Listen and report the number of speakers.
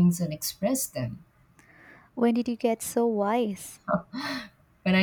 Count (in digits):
2